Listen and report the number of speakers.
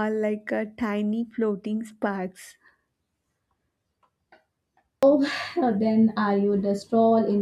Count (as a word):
two